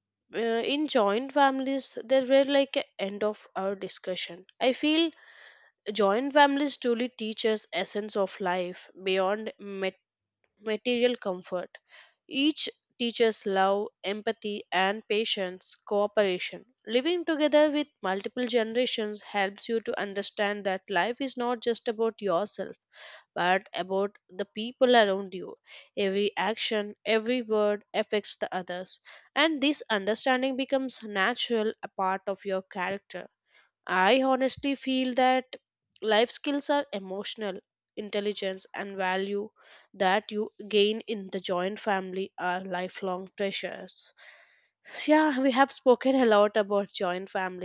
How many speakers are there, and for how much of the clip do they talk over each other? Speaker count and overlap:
1, no overlap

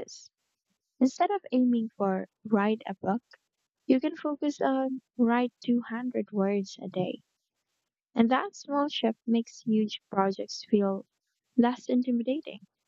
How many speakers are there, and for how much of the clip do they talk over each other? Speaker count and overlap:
1, no overlap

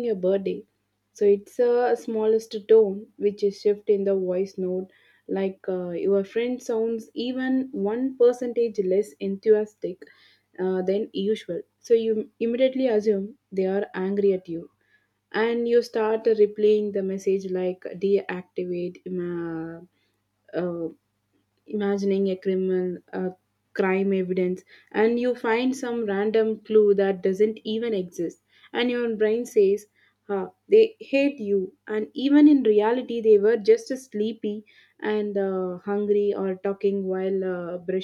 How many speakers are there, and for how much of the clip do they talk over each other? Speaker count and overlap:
1, no overlap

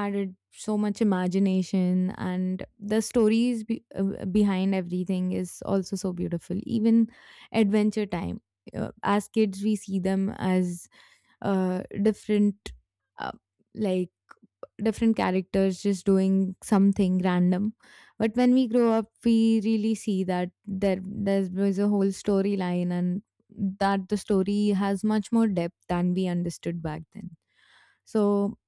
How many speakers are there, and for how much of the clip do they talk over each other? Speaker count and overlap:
1, no overlap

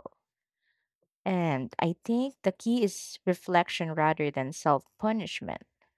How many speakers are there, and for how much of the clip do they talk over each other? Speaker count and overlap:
1, no overlap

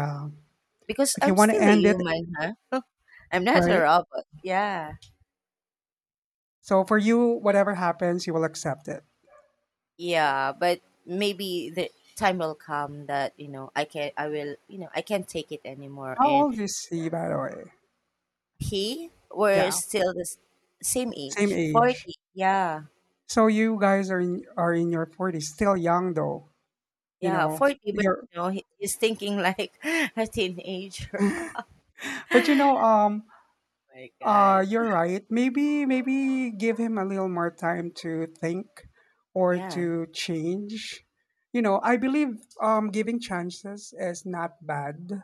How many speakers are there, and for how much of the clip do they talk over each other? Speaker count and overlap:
2, about 10%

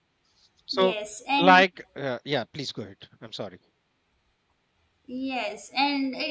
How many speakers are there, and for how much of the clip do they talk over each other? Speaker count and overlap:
2, about 7%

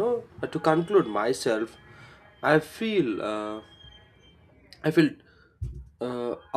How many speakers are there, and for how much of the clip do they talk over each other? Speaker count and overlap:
1, no overlap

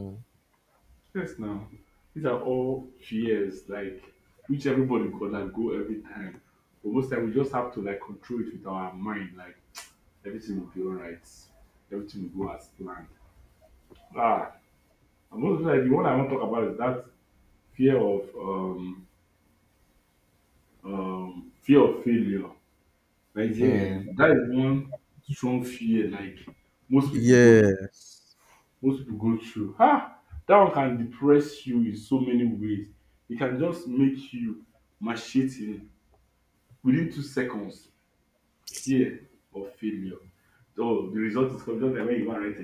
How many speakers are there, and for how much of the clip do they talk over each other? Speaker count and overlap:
2, about 2%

